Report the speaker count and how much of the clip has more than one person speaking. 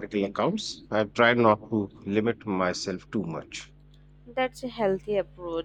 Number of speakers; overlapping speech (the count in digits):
2, no overlap